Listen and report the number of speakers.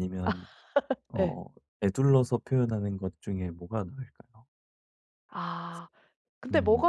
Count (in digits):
2